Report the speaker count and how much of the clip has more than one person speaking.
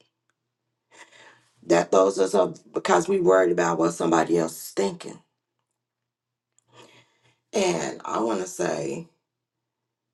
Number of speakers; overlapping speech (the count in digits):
1, no overlap